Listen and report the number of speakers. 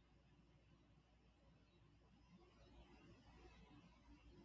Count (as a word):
zero